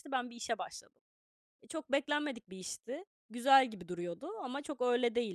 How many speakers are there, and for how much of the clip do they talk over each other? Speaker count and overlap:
1, no overlap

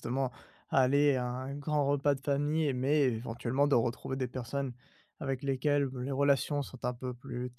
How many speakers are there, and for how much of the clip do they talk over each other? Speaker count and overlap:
1, no overlap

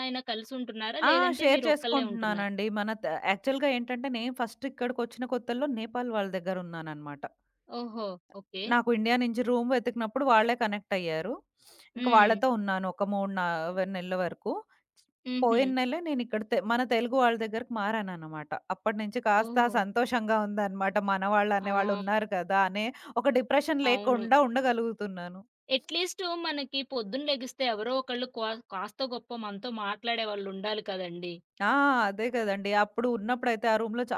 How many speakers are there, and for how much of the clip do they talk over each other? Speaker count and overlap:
2, about 10%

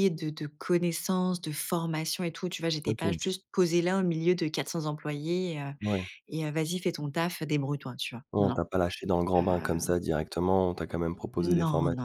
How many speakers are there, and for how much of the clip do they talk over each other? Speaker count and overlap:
2, about 15%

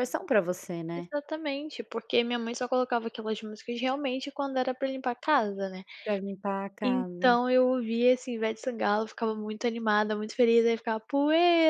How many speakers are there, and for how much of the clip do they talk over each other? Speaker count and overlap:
2, about 5%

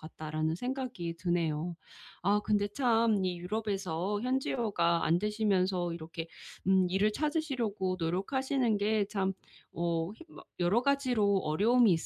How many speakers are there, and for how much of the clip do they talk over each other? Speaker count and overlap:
1, no overlap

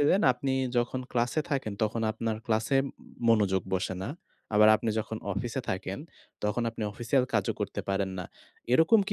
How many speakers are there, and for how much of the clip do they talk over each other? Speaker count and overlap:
1, no overlap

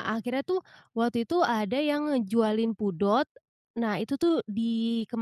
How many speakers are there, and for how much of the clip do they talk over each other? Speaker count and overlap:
1, no overlap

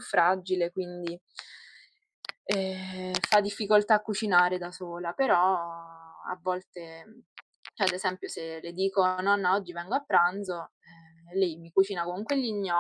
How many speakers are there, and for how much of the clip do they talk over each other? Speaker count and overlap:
1, no overlap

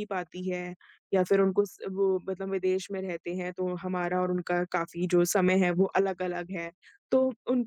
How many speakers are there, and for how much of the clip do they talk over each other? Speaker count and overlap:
1, no overlap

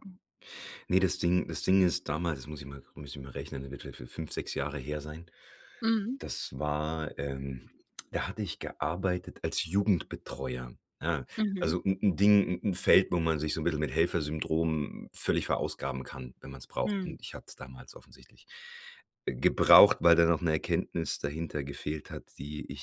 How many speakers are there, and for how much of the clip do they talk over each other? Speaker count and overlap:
2, about 2%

